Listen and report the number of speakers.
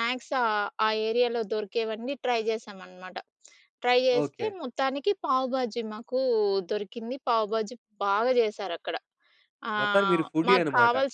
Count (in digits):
2